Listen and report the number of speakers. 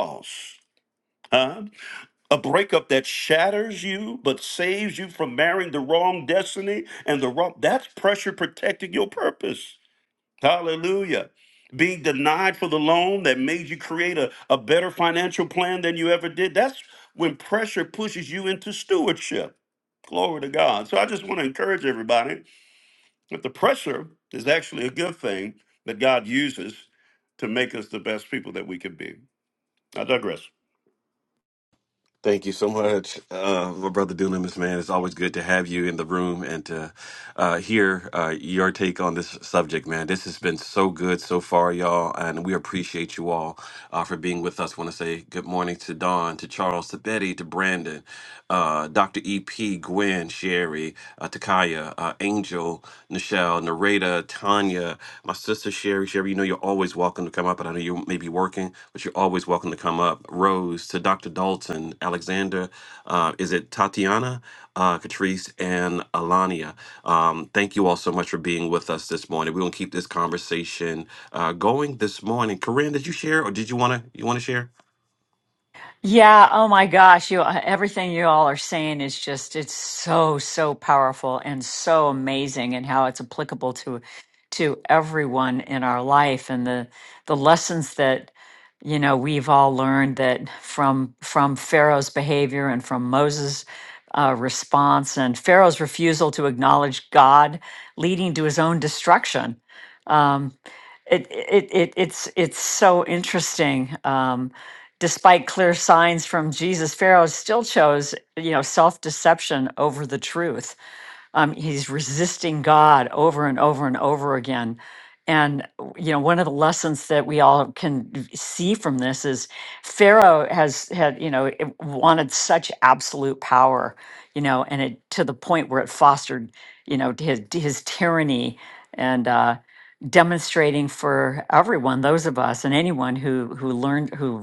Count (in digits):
3